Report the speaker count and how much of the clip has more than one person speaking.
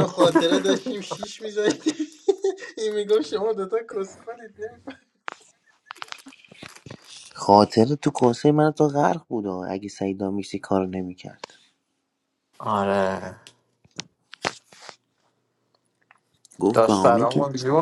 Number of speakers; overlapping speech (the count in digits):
3, about 5%